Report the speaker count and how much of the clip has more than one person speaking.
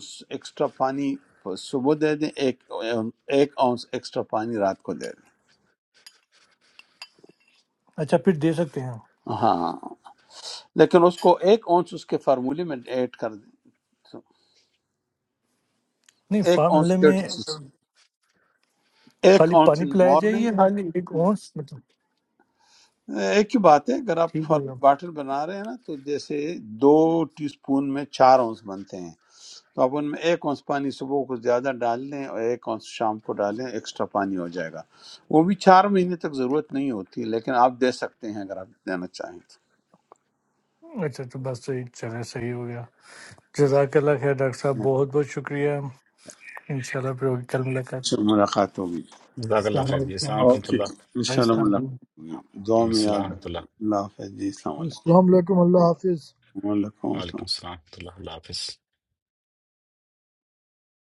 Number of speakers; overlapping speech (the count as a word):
four, about 9%